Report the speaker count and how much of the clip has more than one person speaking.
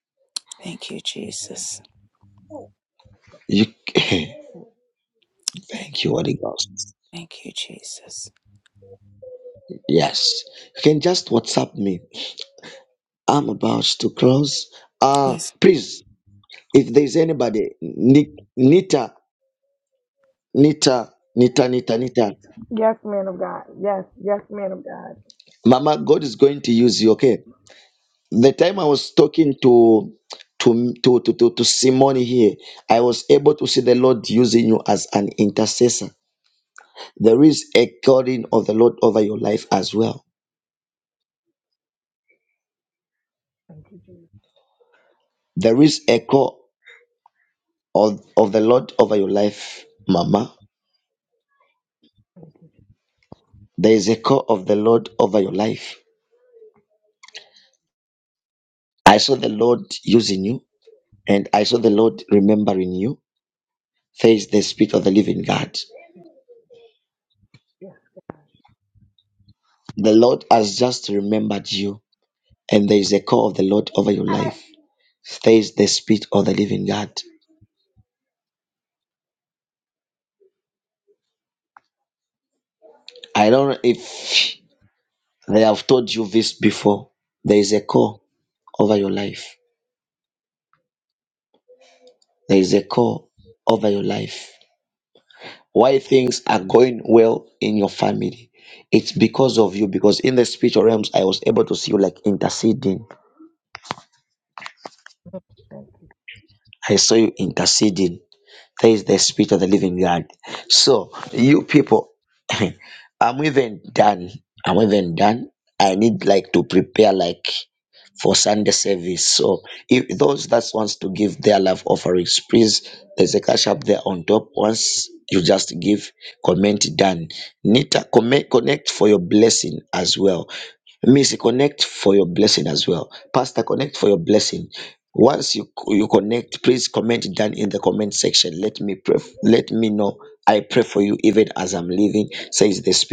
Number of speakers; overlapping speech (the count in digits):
3, under 1%